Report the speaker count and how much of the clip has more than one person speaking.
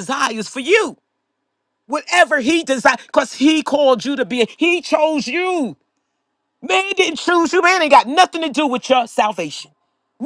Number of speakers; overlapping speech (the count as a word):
one, no overlap